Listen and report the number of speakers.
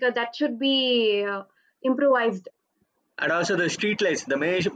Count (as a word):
two